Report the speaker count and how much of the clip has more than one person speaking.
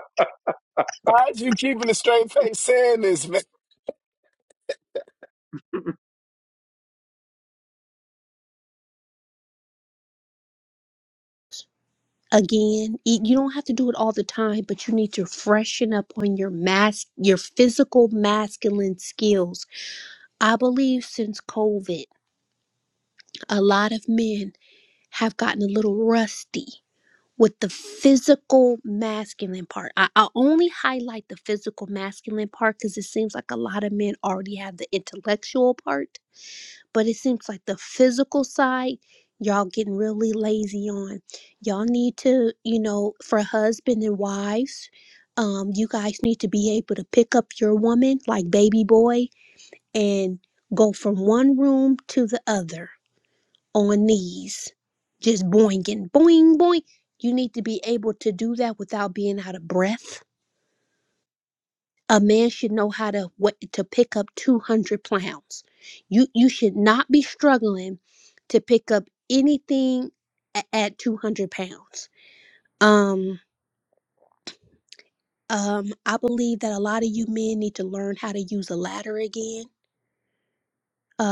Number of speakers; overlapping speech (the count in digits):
2, no overlap